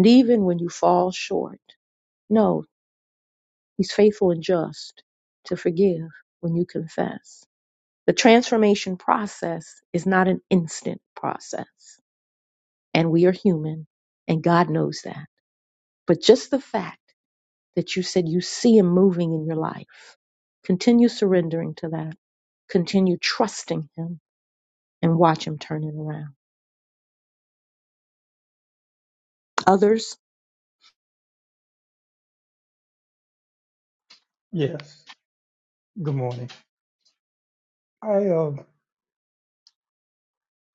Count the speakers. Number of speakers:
2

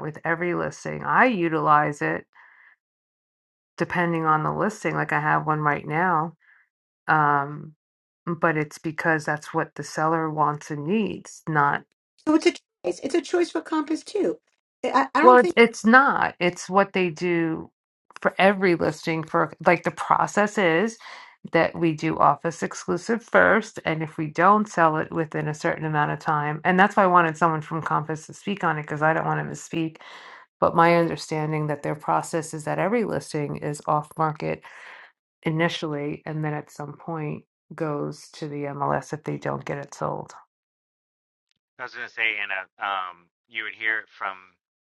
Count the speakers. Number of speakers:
3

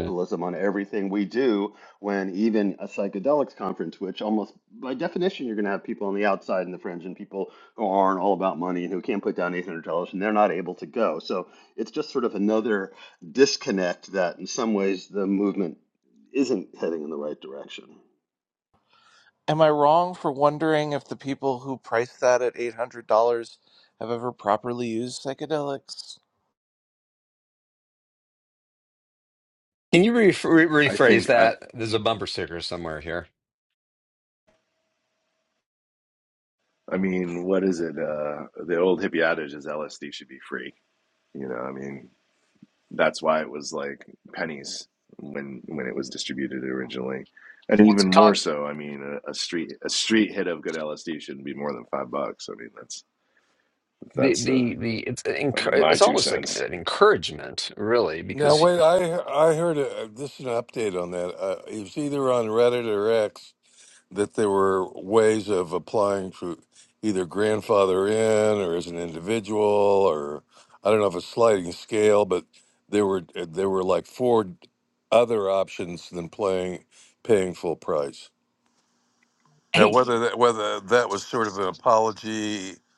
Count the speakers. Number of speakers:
5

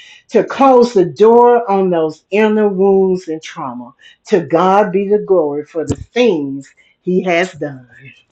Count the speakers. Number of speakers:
1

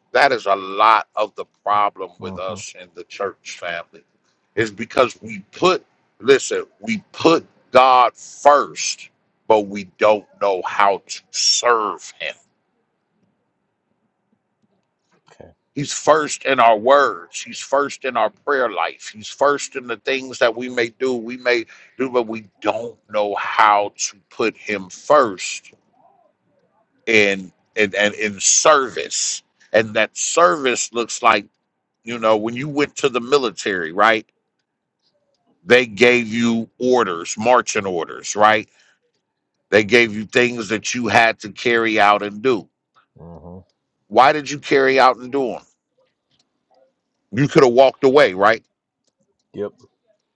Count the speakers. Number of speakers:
2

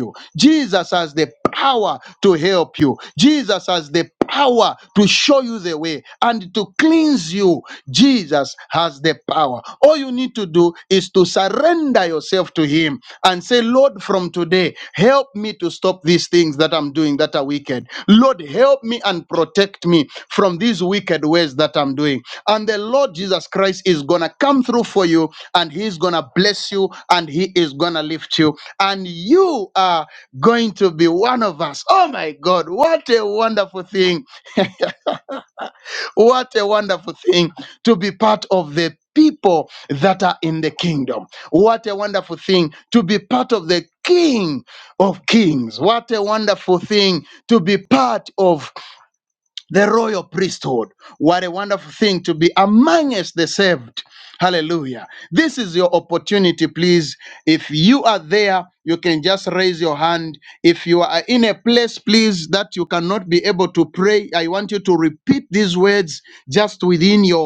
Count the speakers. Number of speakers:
1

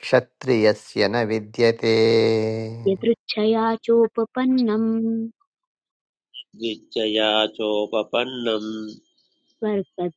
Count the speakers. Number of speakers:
3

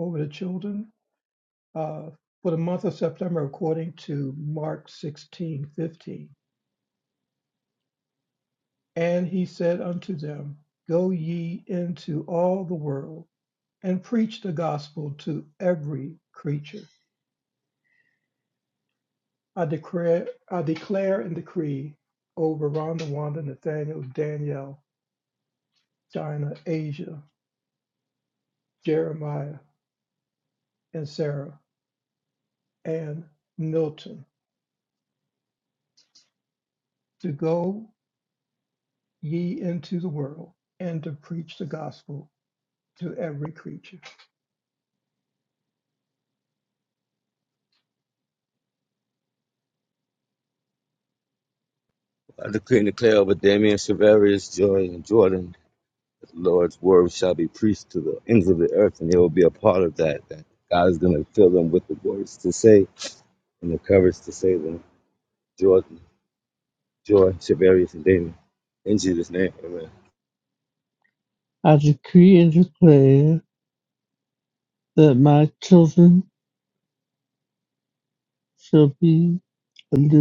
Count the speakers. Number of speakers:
3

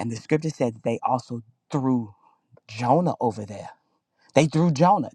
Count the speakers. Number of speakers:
1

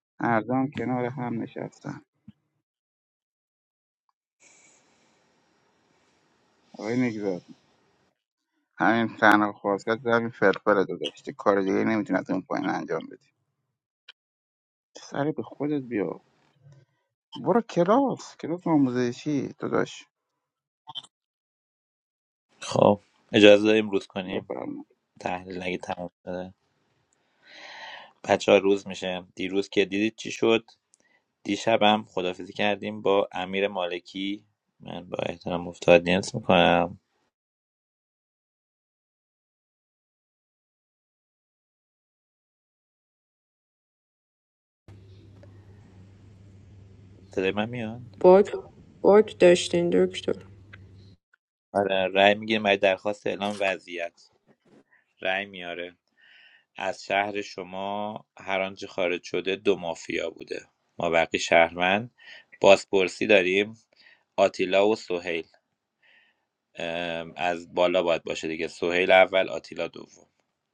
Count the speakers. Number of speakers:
3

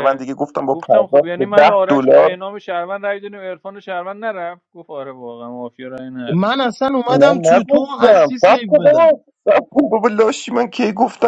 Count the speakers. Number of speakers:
3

